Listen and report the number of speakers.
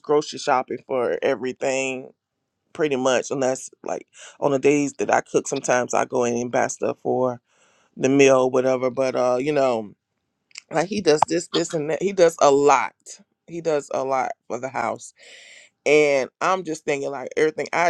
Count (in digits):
1